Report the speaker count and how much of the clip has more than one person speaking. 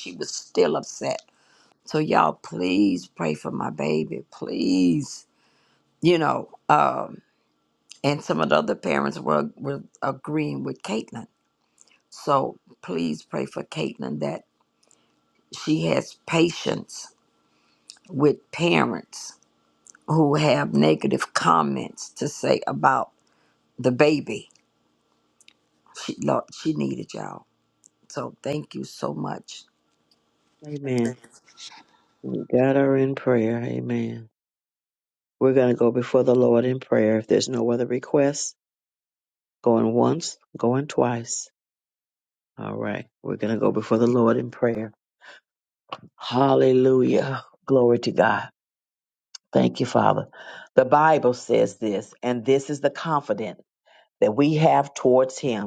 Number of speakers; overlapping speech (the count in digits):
2, no overlap